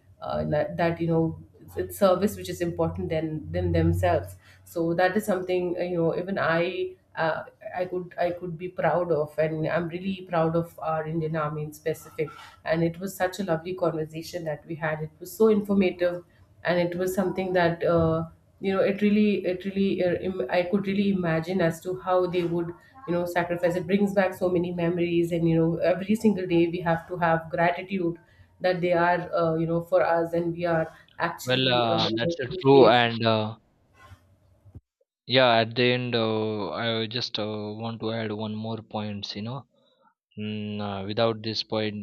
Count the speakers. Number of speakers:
2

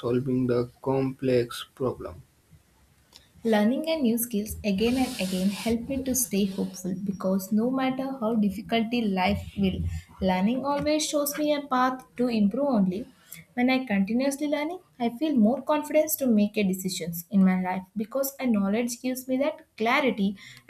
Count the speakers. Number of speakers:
2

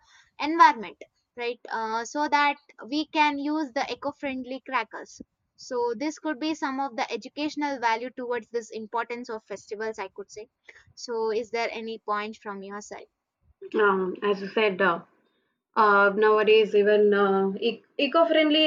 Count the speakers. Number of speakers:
2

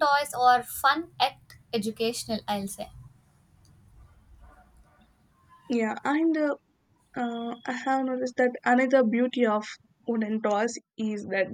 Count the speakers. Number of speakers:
2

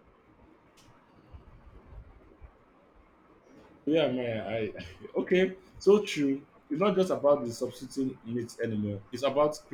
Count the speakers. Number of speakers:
1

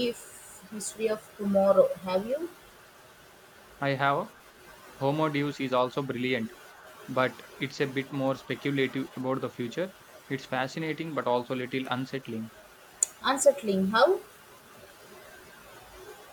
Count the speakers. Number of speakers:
2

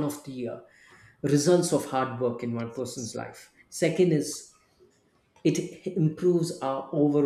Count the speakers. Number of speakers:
1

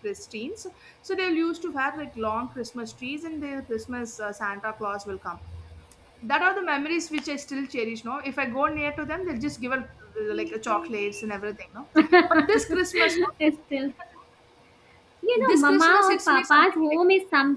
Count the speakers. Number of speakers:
2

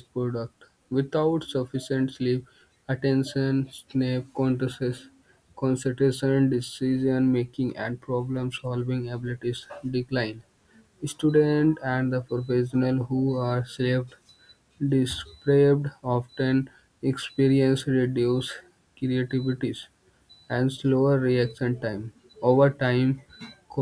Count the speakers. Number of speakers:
1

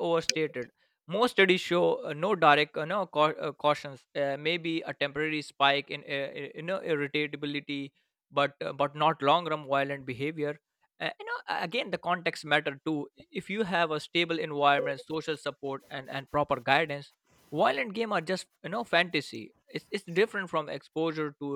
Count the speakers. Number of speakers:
1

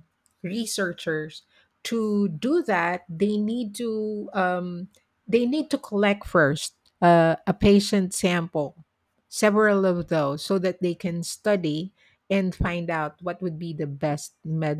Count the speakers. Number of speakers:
1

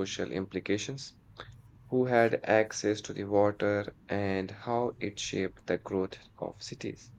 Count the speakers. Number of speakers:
1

